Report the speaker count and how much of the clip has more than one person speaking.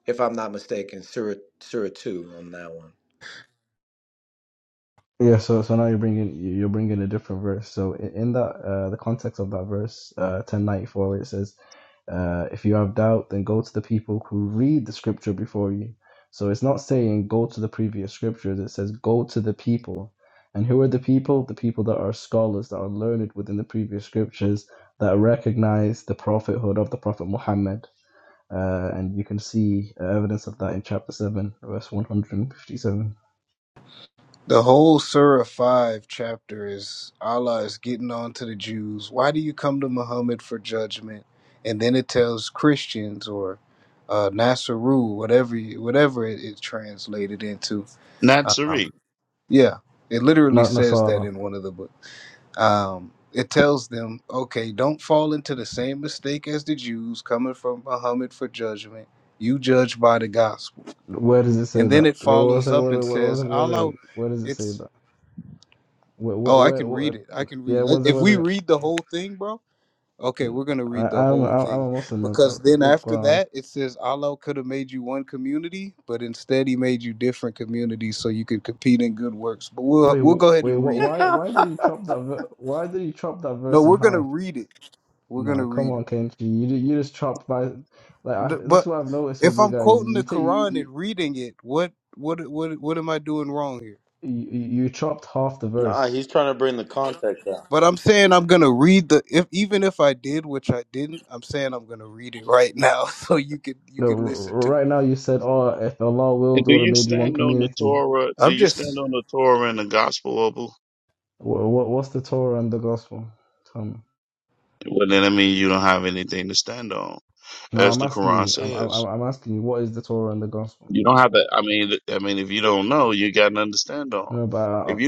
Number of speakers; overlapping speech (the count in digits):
5, about 12%